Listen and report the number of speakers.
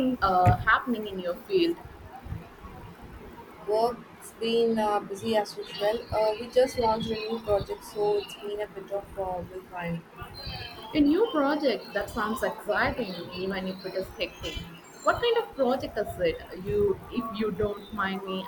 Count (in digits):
2